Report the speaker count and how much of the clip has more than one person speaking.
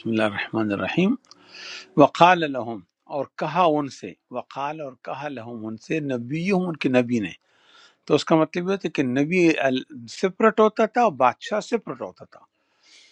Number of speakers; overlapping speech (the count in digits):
1, no overlap